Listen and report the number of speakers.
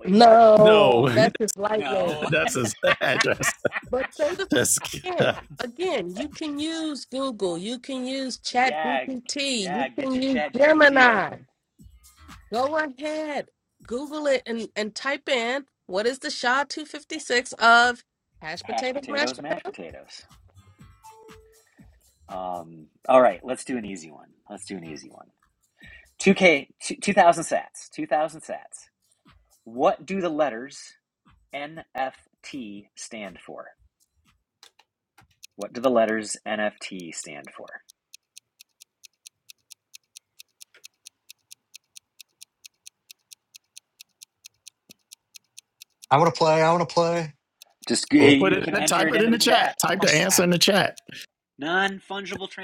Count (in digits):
4